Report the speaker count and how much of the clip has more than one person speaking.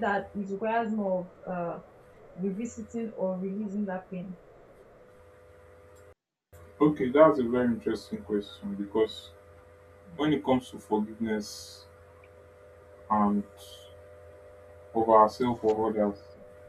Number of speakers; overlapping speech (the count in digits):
2, no overlap